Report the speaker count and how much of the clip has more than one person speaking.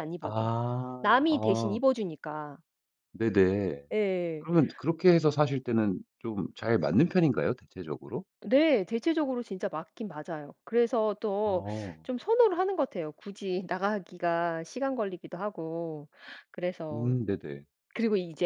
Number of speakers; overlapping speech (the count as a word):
two, about 6%